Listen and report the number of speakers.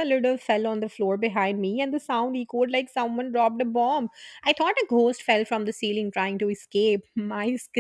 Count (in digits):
1